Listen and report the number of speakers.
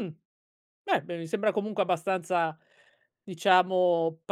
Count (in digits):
1